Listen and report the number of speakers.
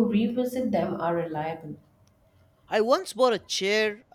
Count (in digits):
2